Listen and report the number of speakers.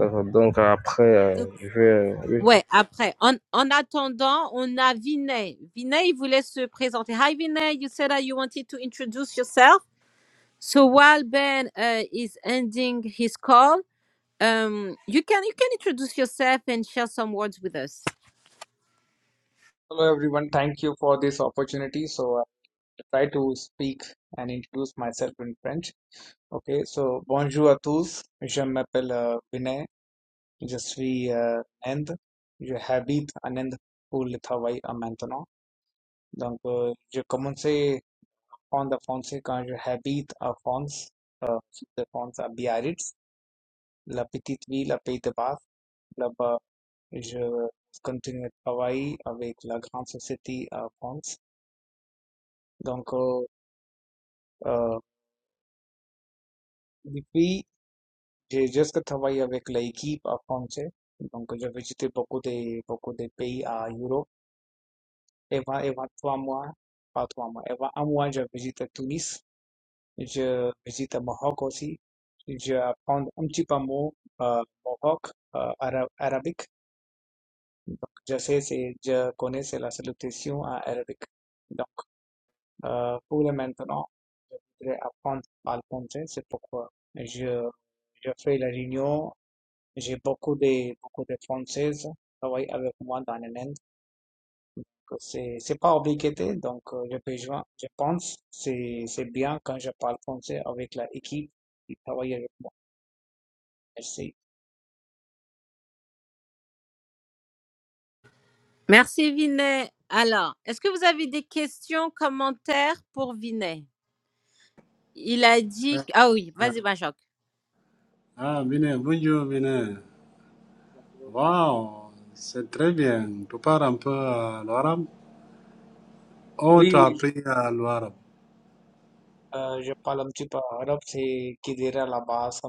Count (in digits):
4